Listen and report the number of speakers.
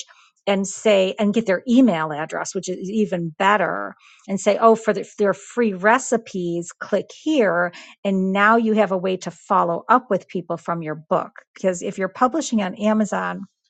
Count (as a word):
one